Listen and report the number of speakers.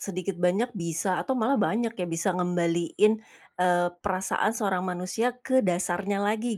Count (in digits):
1